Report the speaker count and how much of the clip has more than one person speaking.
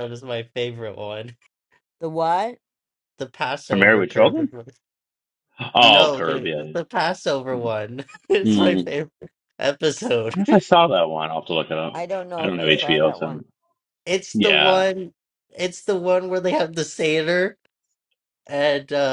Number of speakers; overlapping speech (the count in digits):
3, about 20%